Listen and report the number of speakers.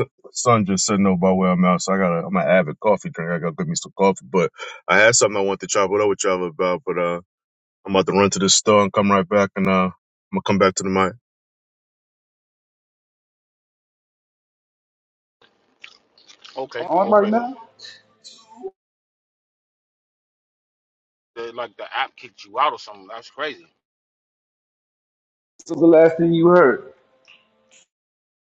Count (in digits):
3